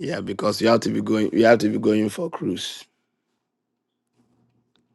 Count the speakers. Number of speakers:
1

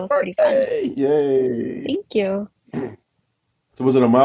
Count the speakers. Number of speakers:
2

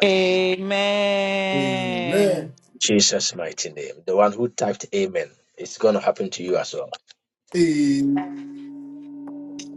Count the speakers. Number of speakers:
3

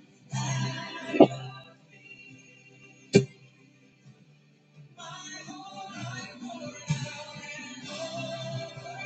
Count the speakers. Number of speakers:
0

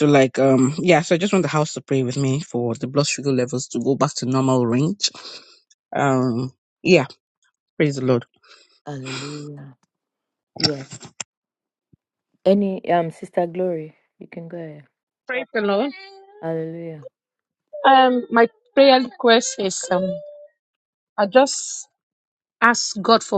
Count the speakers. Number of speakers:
3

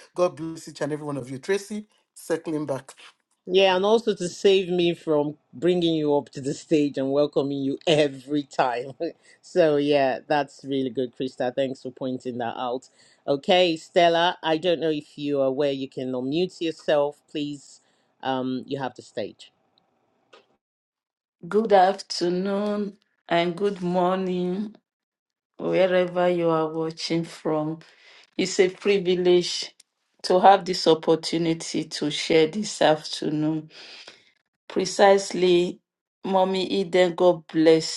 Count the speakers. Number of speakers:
3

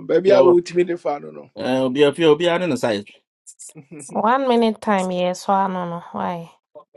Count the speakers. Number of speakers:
3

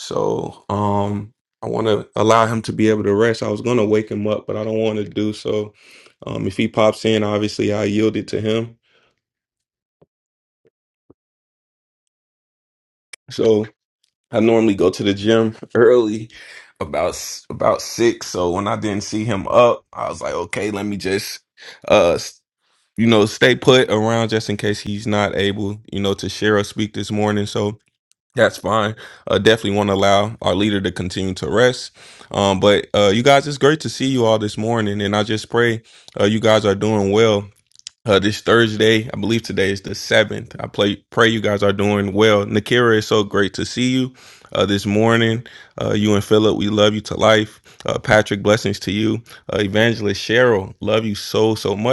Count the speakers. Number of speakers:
1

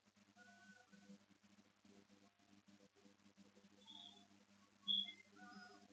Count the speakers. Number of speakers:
0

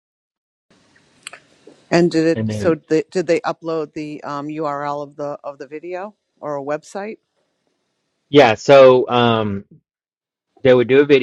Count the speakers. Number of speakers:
2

